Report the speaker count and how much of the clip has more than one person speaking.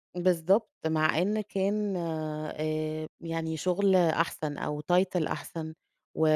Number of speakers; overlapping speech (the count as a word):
one, no overlap